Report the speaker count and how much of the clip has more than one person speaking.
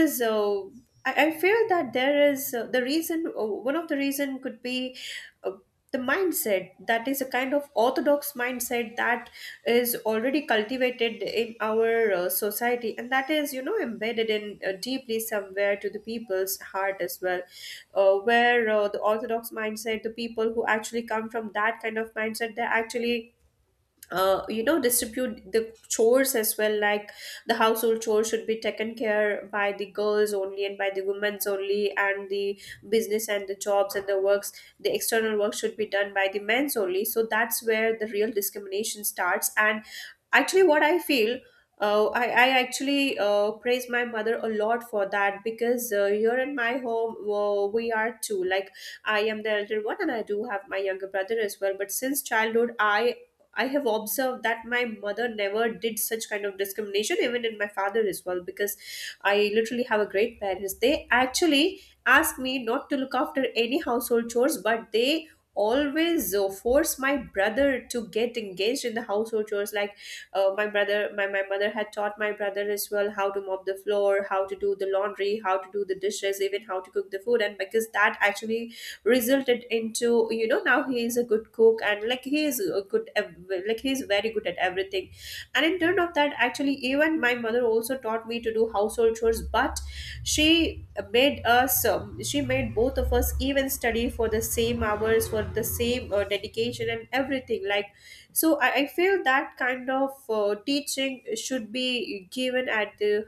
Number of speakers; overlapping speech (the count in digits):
1, no overlap